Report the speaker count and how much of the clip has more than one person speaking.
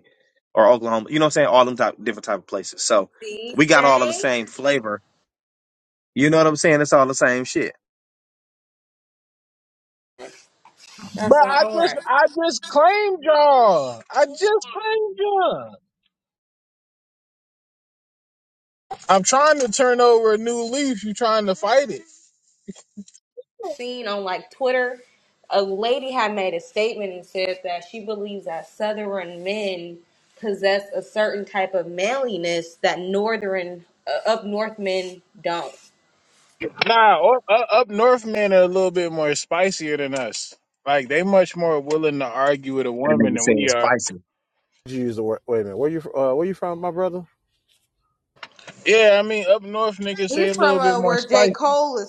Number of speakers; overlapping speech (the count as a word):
four, about 7%